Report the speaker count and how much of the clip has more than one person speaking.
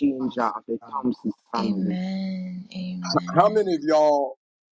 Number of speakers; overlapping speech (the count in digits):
3, about 16%